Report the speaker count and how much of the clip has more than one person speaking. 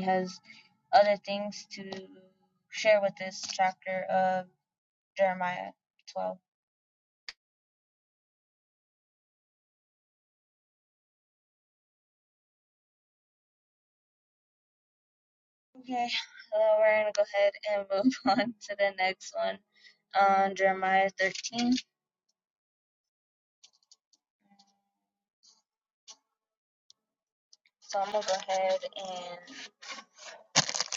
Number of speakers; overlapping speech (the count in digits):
1, no overlap